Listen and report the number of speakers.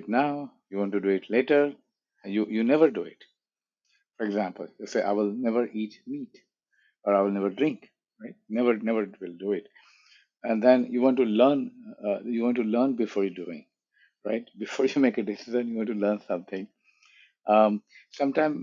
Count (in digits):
1